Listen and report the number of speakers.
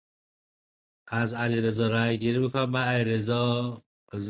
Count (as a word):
one